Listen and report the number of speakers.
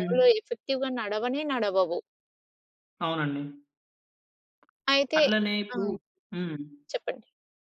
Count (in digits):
2